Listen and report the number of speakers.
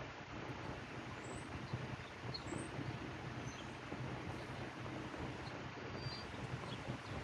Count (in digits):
0